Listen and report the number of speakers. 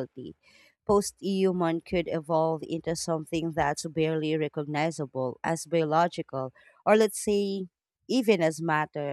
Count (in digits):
1